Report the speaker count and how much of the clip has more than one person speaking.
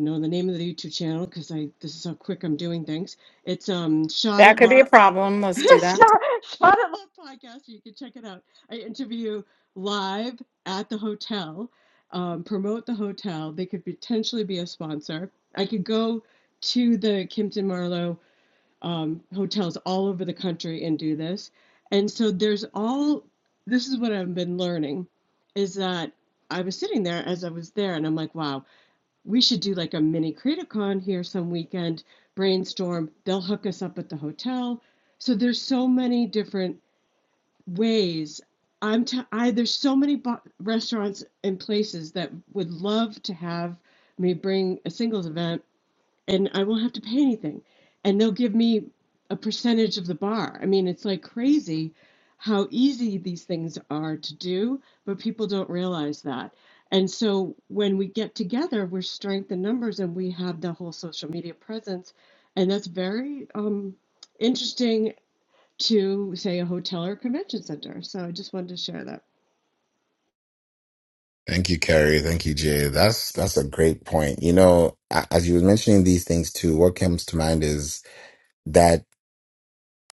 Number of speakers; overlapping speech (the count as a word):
three, about 1%